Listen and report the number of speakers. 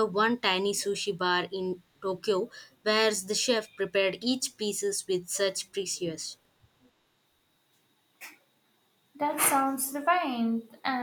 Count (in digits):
2